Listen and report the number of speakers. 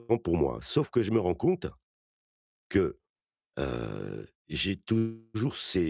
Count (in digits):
1